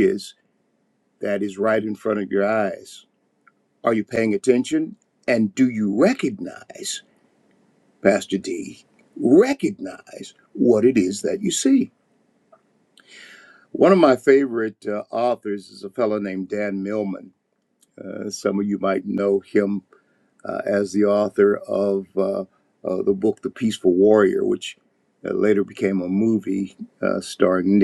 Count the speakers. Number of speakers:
1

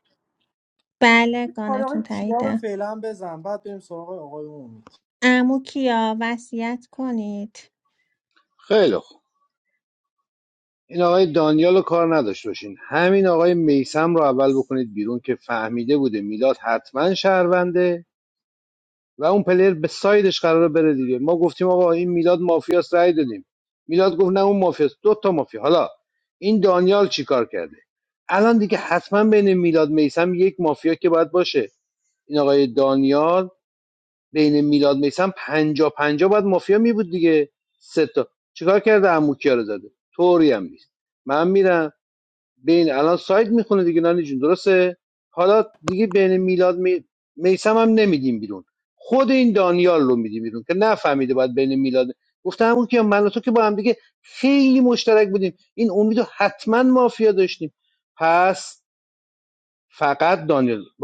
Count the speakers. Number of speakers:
3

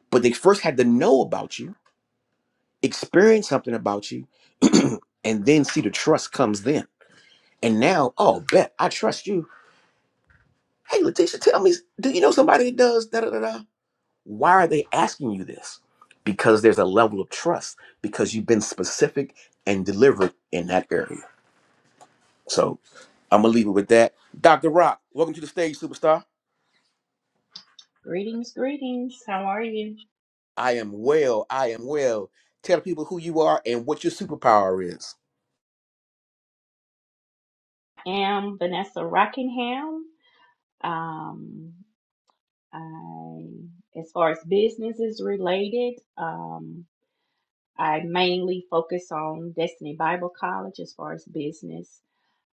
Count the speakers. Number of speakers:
2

